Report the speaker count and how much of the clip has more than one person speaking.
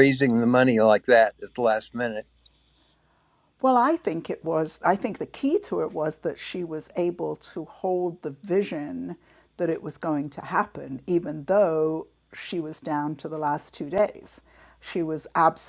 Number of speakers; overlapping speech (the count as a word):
two, no overlap